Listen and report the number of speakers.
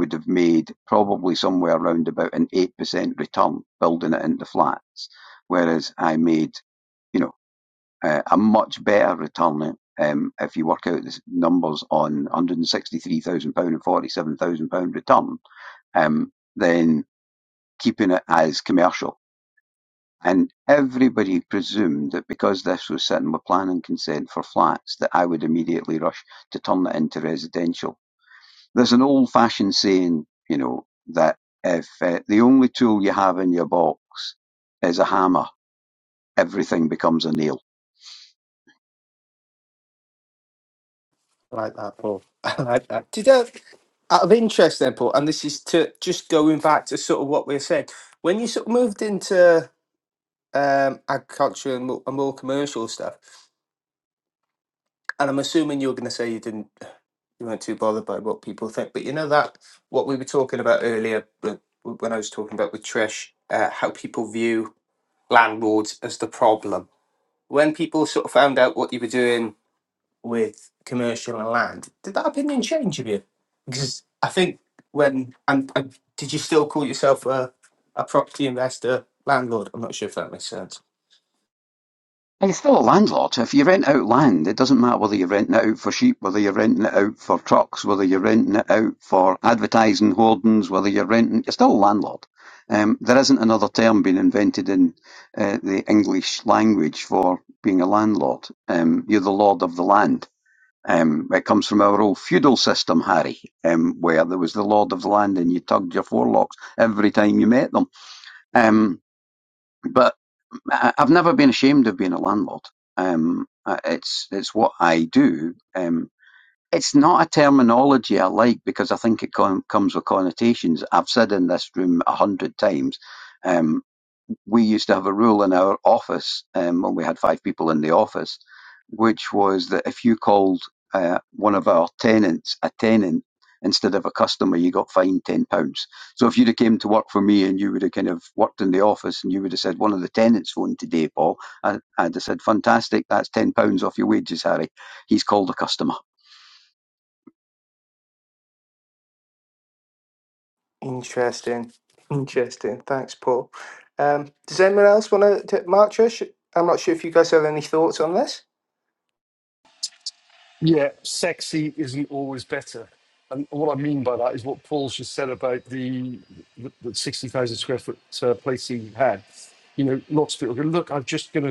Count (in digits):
3